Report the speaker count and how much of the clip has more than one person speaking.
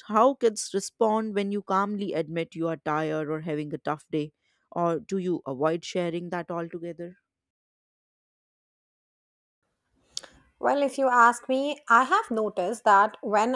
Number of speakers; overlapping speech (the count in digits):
2, no overlap